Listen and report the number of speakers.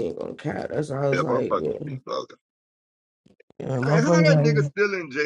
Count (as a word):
two